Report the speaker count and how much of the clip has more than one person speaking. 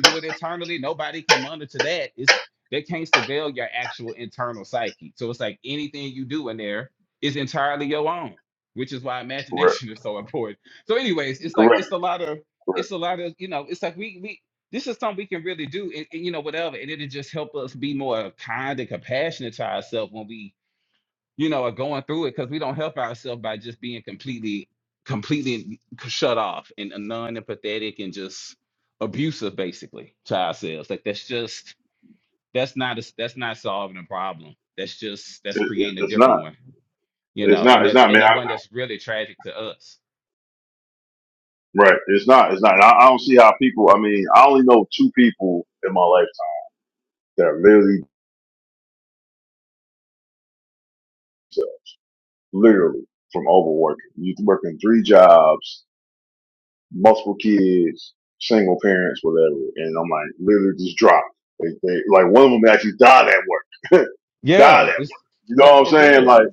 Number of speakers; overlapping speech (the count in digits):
2, about 6%